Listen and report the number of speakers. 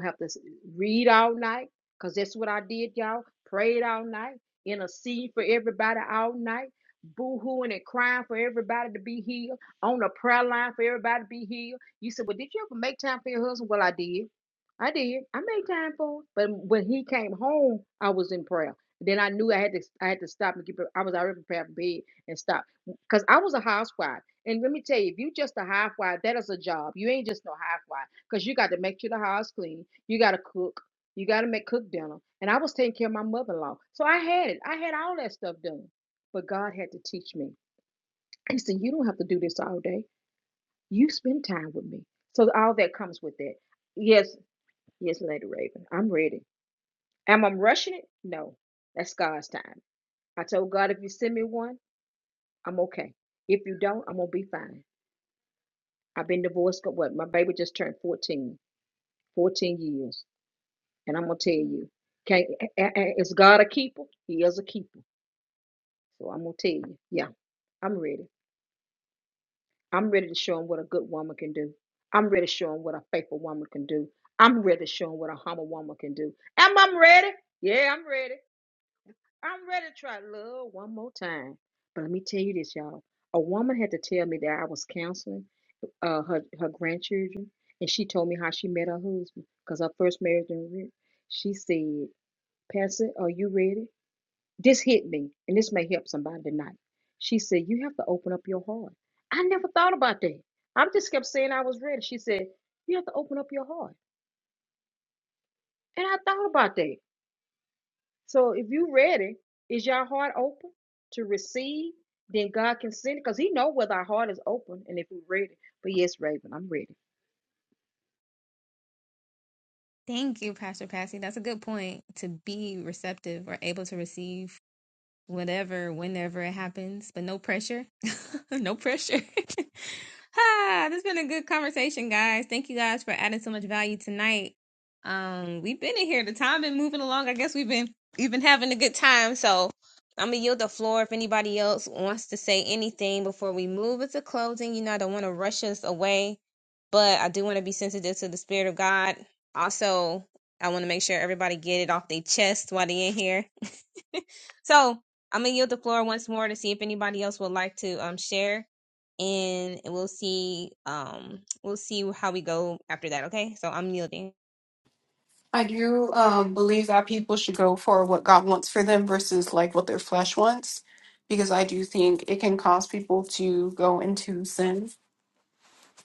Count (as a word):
three